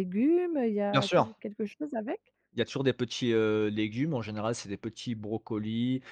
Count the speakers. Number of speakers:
two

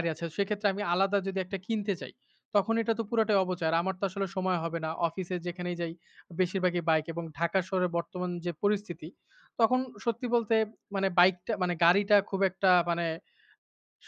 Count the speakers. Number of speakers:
one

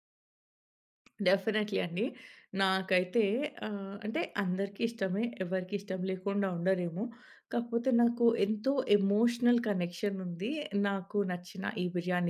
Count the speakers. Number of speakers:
one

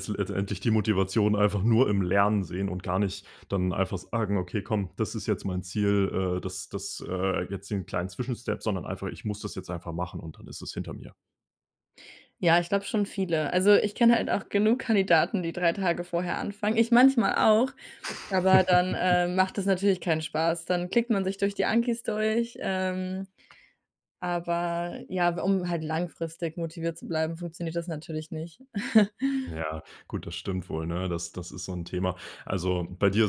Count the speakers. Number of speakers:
two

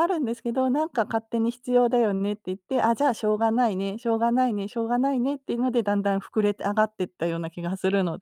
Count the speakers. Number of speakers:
one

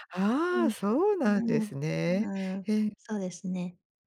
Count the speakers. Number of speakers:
two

